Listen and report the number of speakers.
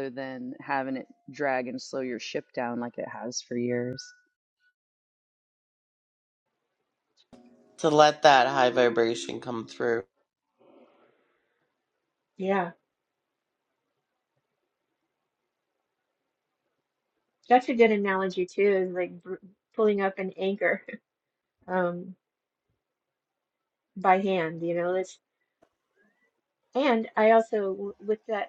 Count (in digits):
3